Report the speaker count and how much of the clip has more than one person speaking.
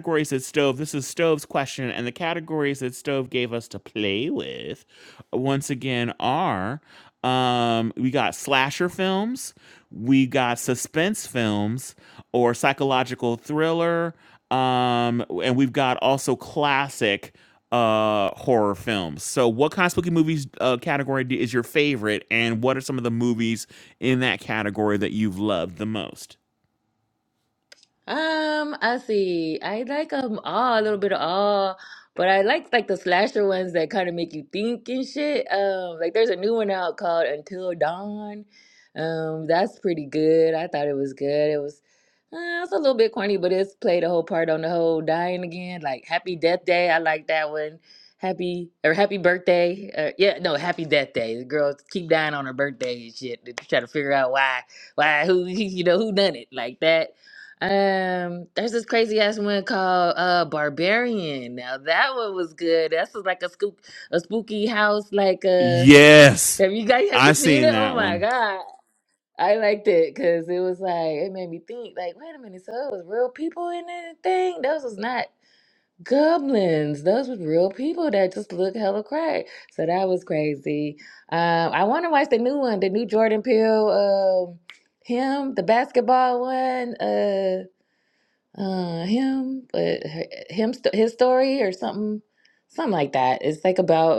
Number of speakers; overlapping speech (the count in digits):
2, about 1%